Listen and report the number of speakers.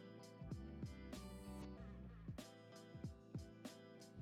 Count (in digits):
0